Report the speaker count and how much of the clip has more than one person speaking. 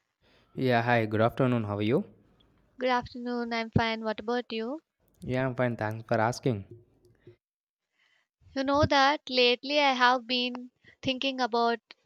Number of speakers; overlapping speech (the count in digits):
2, no overlap